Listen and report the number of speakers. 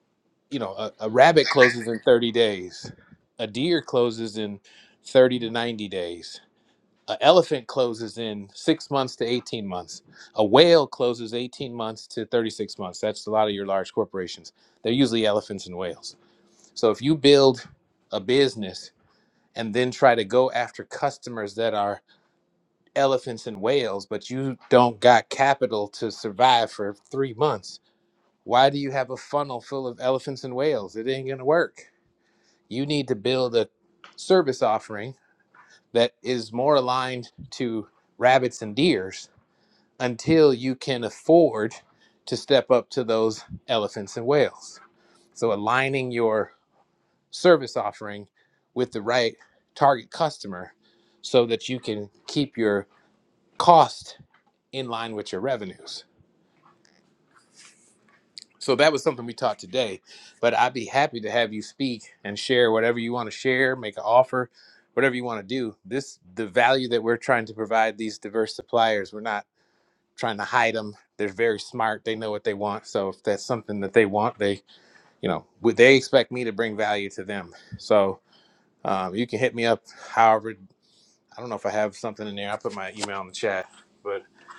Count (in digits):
1